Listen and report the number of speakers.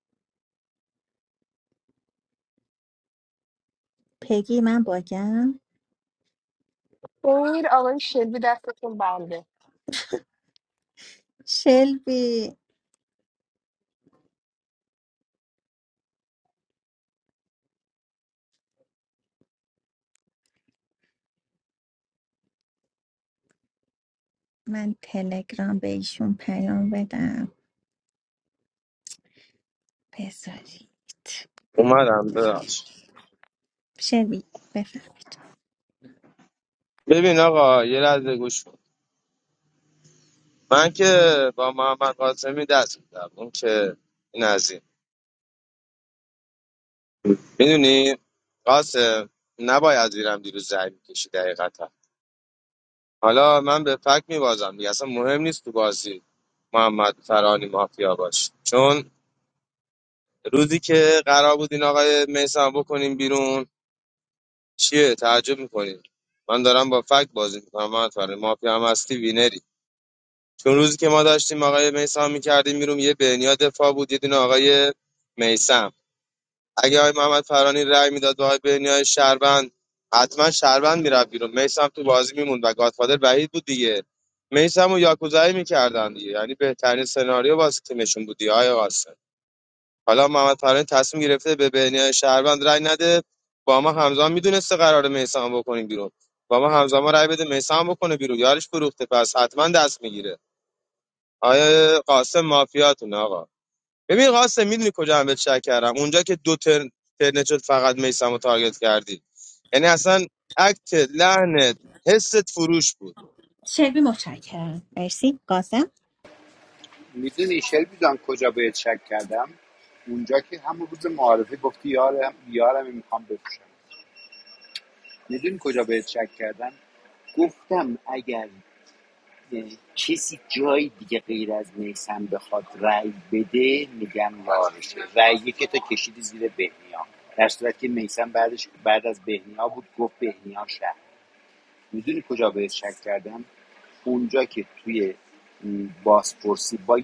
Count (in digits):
4